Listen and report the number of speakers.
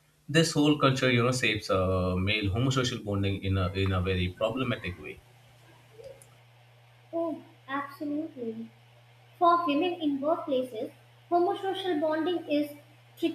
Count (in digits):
2